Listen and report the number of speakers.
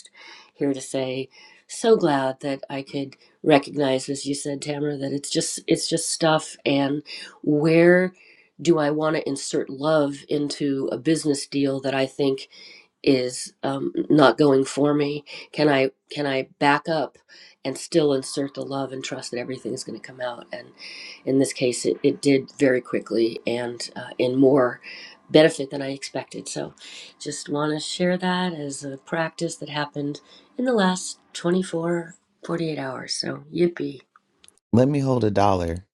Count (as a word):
two